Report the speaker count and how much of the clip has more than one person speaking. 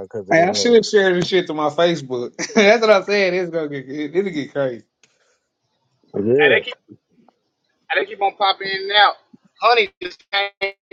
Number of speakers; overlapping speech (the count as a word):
three, about 7%